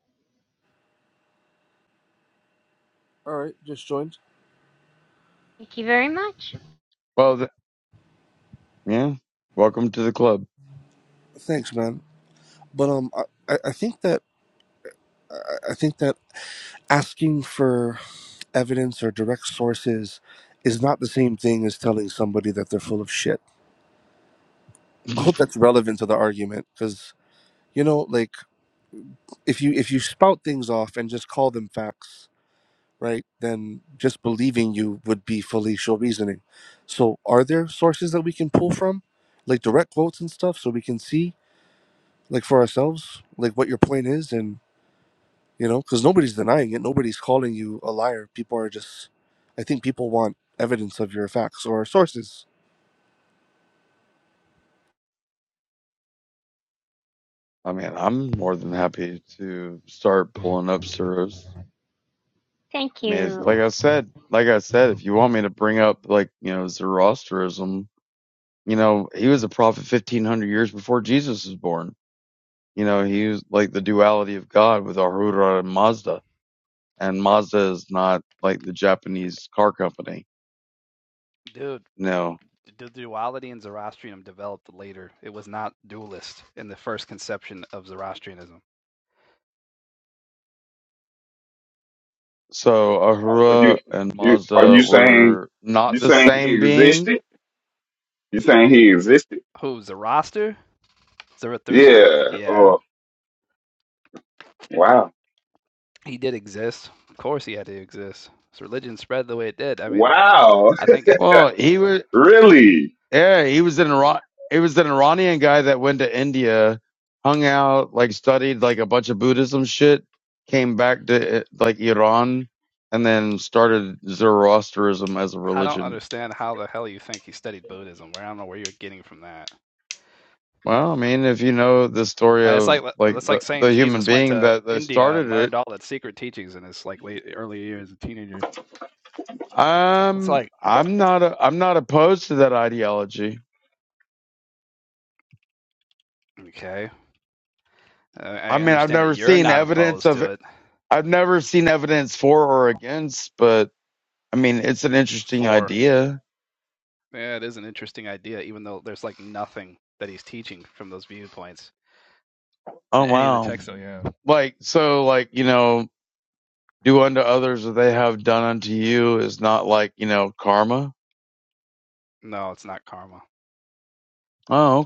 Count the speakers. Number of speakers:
five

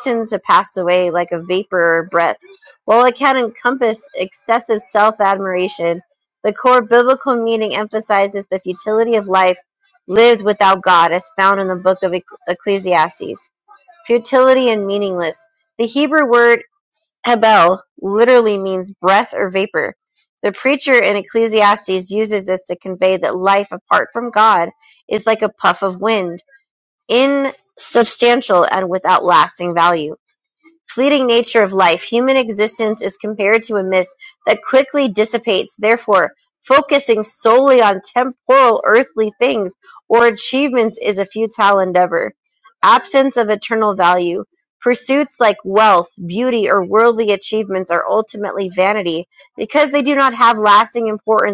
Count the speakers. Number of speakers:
one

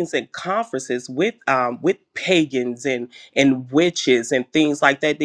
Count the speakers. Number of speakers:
one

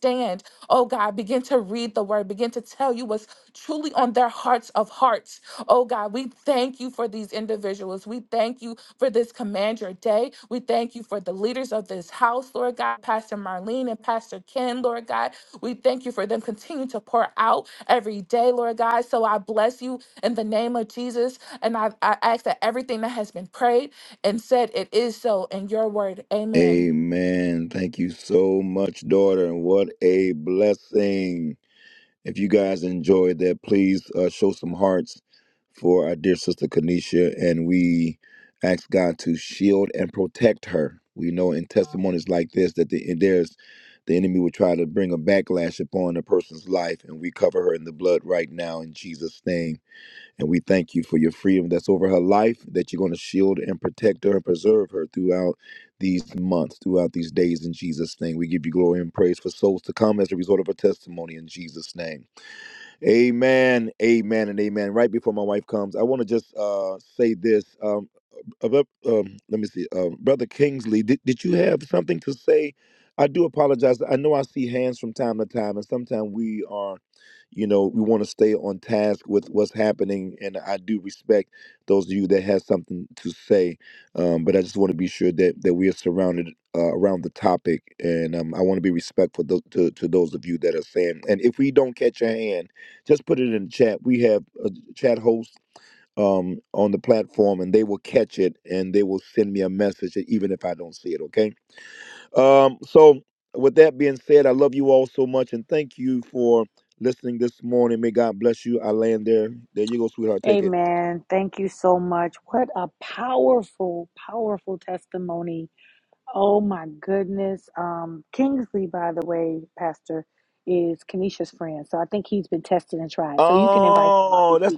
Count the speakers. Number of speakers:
three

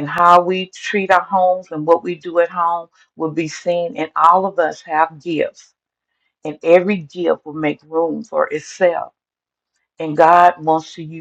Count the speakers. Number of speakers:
one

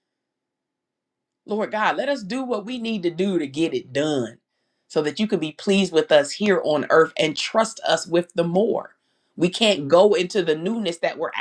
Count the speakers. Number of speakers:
one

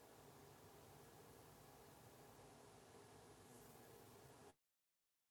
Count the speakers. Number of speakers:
zero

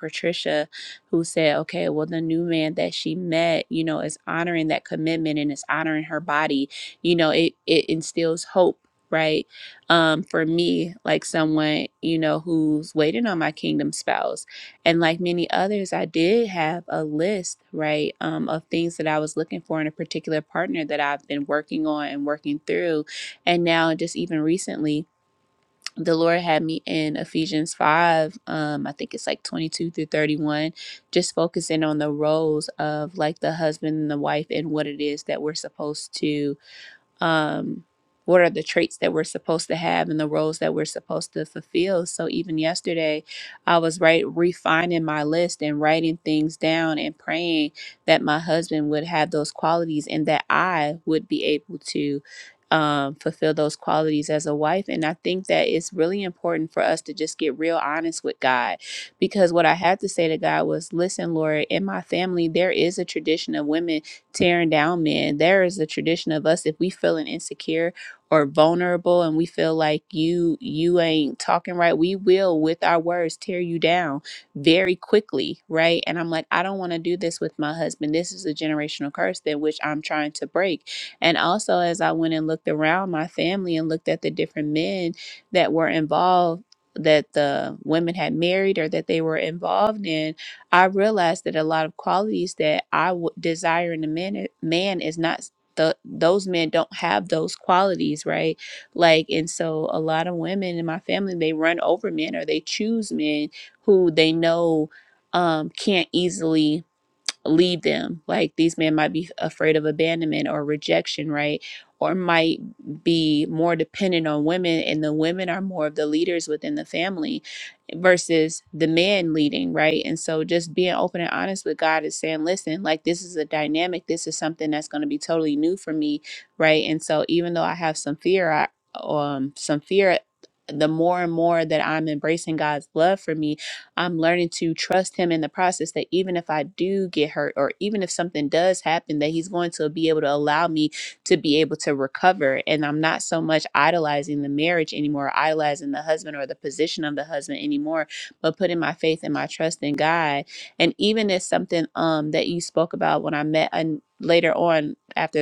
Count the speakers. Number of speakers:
one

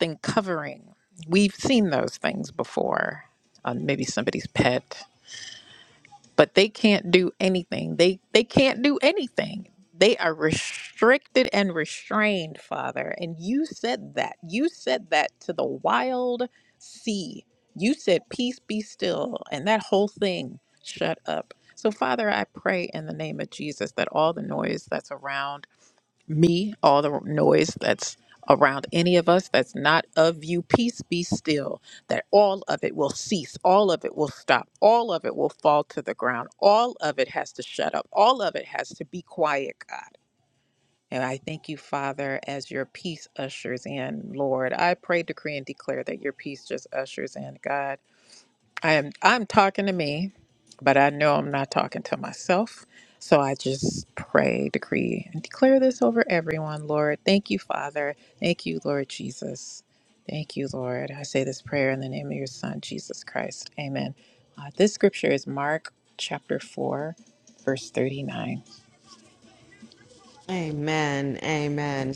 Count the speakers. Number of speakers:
two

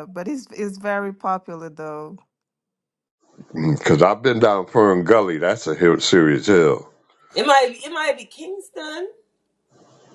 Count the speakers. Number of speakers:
three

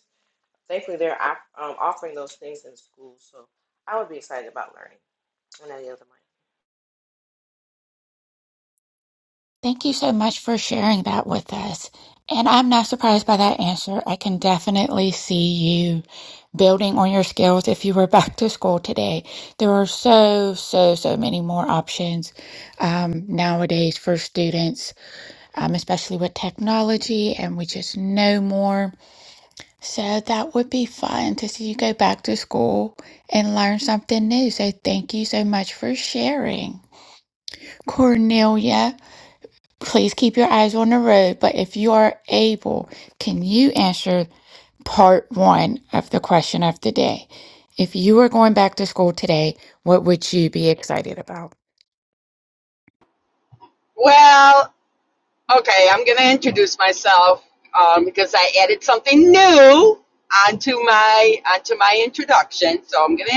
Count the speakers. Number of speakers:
three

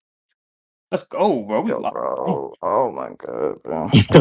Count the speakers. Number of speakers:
two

